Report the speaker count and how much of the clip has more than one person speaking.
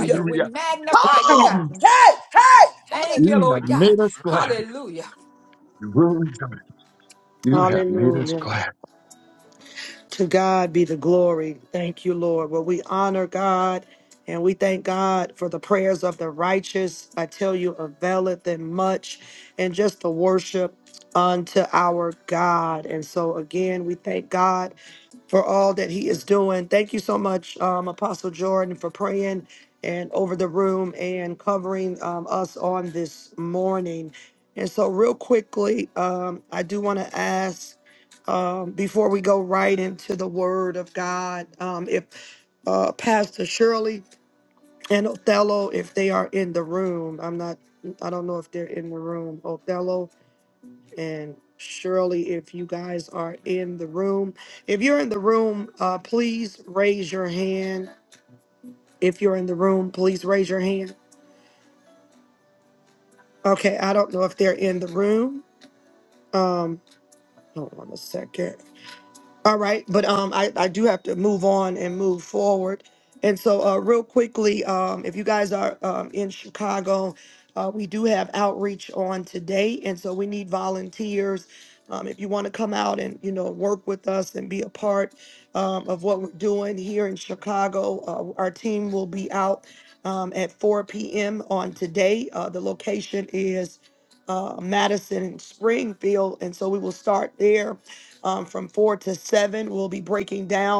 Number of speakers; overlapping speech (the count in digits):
4, about 4%